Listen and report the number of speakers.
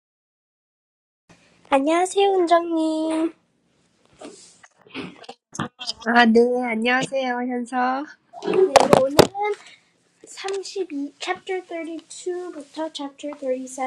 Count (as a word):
two